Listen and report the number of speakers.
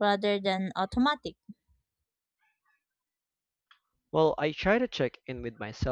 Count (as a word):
two